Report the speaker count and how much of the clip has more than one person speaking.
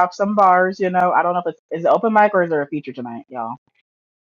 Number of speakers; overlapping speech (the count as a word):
one, no overlap